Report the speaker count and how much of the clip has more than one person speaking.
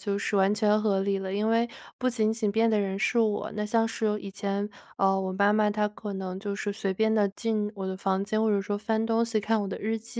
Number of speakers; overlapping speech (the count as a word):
one, no overlap